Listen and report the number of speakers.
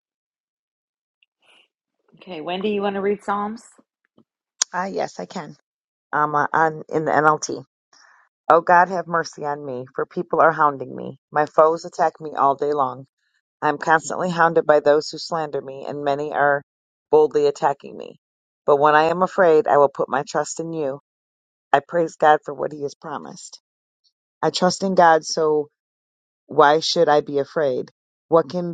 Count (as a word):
two